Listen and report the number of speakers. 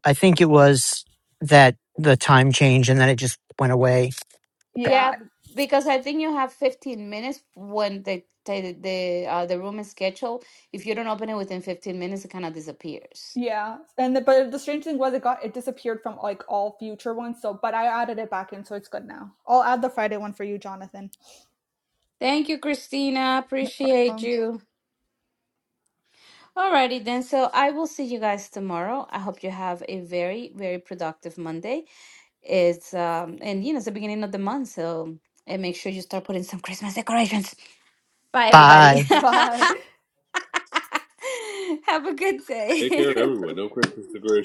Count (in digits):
4